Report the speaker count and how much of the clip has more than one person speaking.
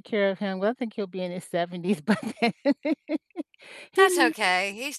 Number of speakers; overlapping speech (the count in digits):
2, about 7%